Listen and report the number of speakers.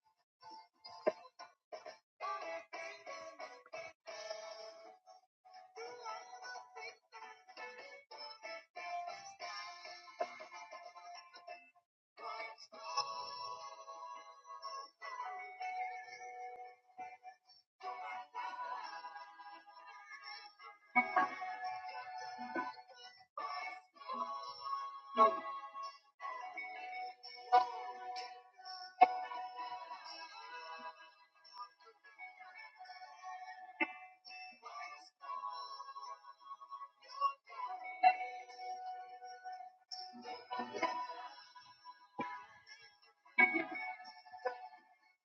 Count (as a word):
zero